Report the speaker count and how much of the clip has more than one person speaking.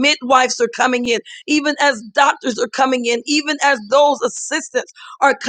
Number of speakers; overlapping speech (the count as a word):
one, no overlap